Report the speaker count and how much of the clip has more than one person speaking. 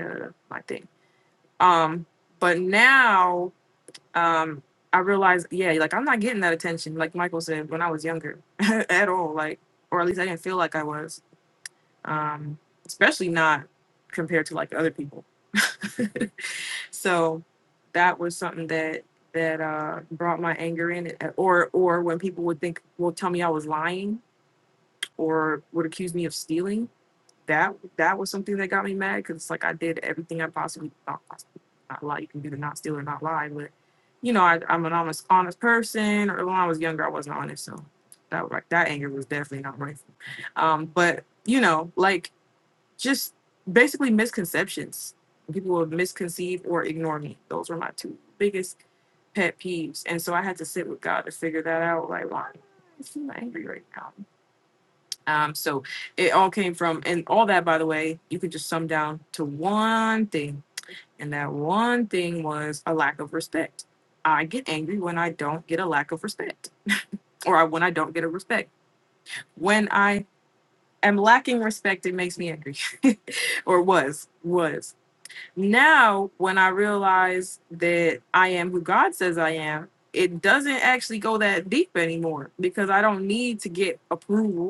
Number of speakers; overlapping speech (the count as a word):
one, no overlap